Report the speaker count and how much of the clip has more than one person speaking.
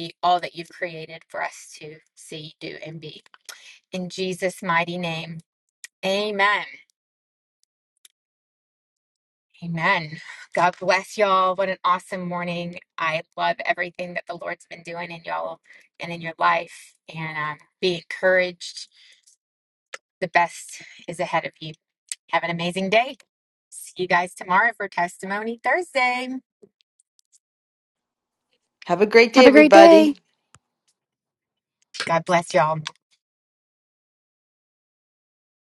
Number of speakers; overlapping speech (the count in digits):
2, no overlap